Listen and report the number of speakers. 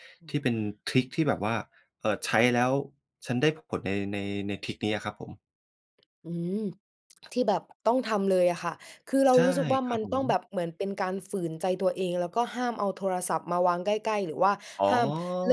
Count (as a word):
two